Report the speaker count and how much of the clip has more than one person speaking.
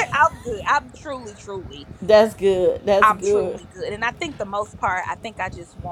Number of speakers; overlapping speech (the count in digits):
2, about 10%